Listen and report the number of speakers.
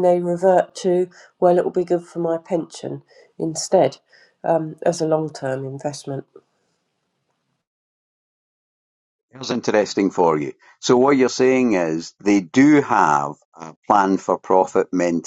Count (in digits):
2